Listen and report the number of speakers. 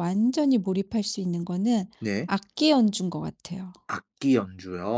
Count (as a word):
two